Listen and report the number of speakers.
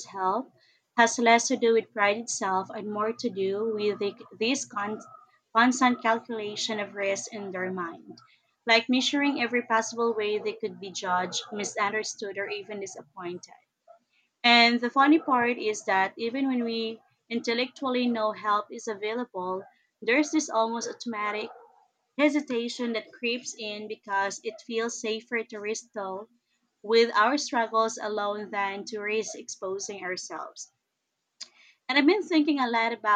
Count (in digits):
1